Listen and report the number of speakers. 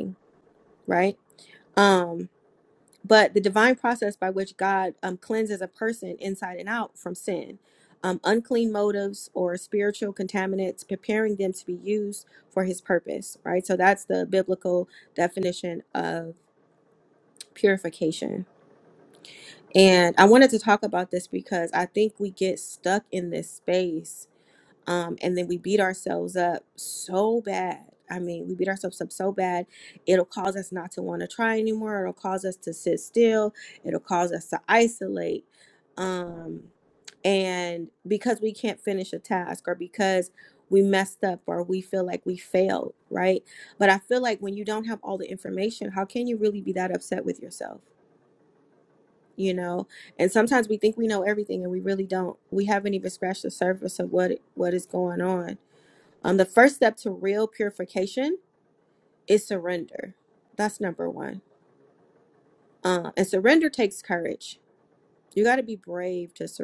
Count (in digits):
1